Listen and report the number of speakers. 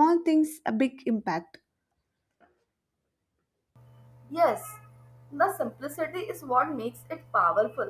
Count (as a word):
two